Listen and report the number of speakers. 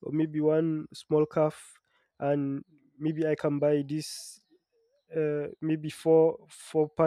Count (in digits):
1